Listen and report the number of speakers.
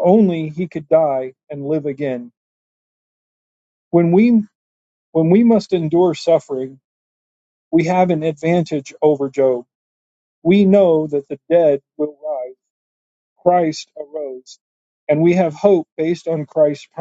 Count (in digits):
1